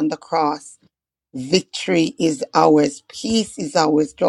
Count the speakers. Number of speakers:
one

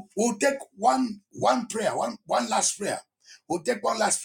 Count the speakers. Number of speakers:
one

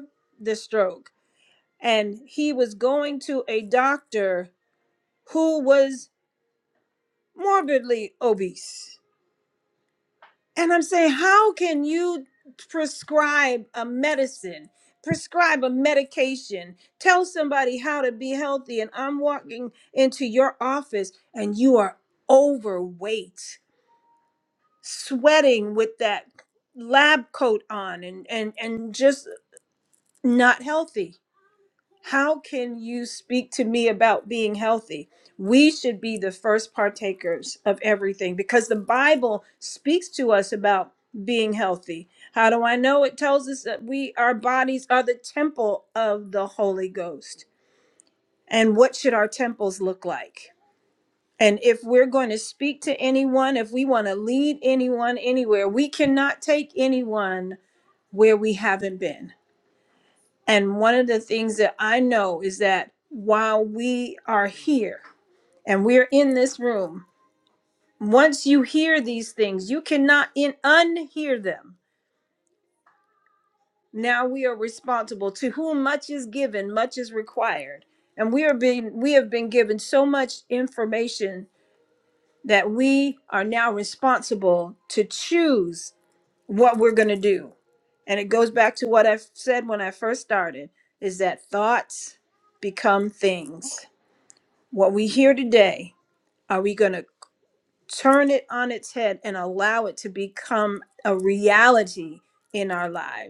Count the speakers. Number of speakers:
one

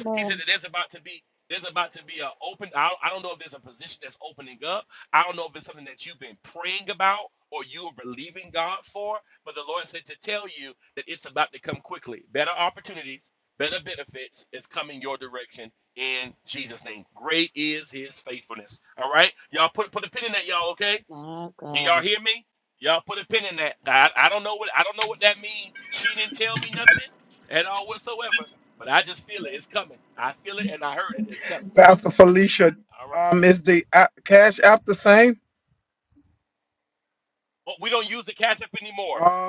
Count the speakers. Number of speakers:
three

